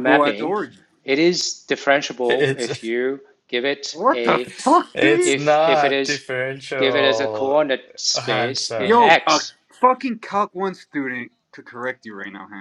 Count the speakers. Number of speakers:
three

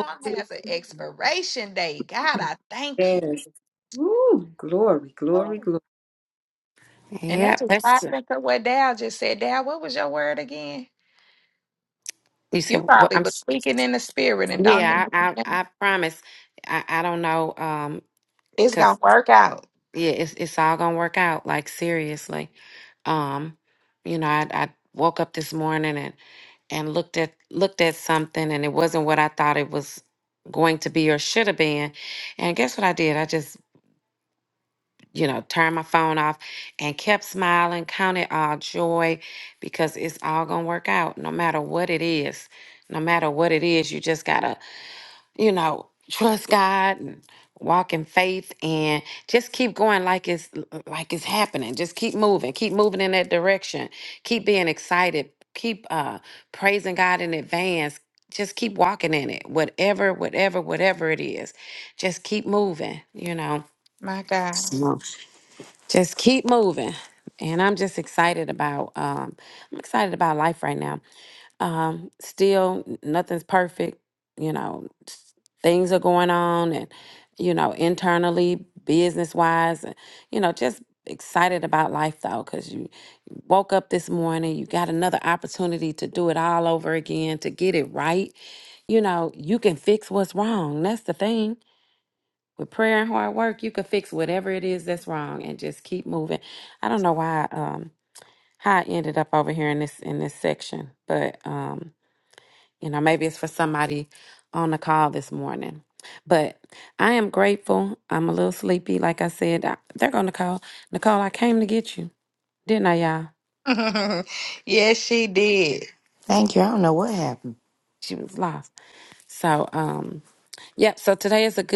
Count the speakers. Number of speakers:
four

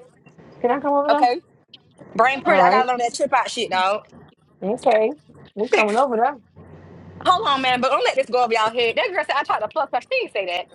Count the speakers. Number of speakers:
two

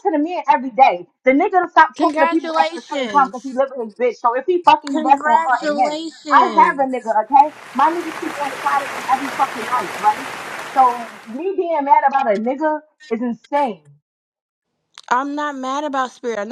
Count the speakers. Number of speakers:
two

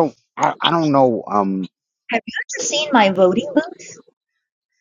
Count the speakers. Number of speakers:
two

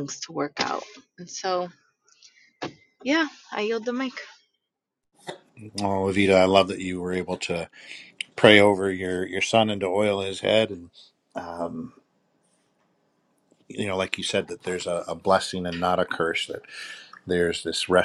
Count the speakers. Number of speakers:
two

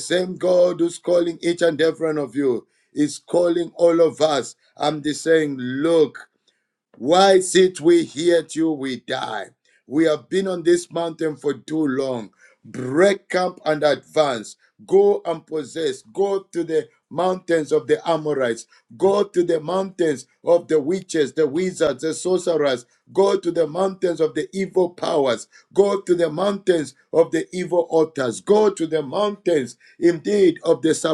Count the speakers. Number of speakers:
one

